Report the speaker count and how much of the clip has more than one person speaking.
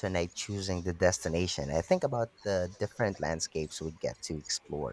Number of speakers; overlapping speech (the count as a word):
one, no overlap